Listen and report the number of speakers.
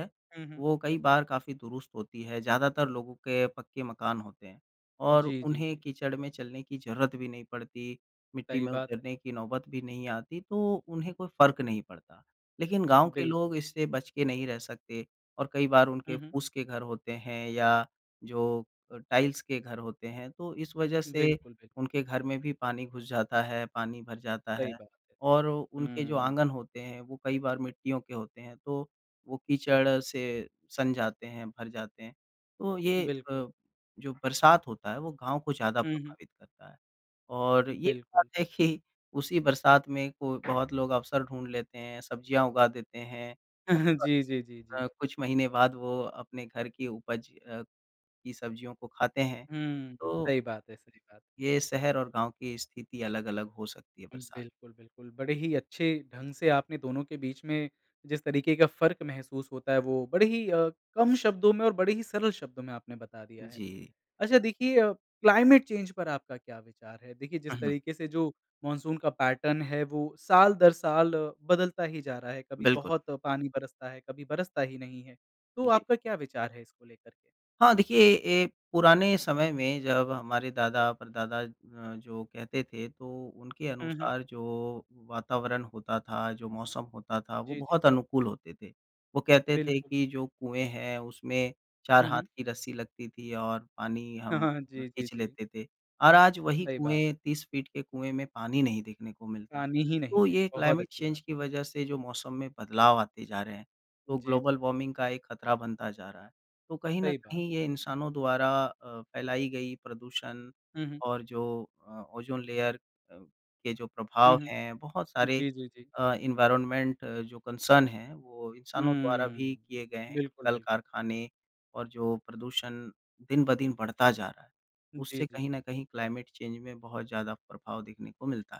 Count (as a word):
two